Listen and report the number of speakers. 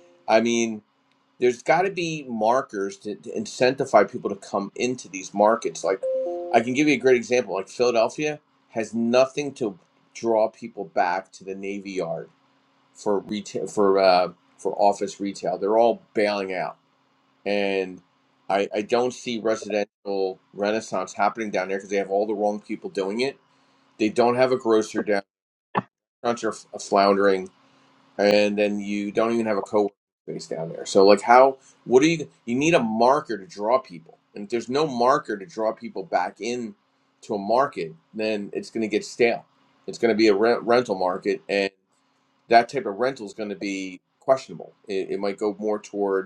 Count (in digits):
1